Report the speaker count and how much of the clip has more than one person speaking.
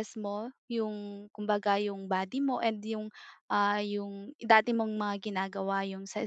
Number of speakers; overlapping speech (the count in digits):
1, no overlap